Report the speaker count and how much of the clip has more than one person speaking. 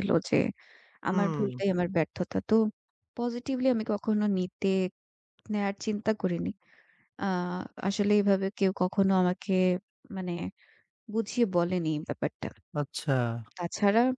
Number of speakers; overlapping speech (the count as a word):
two, about 4%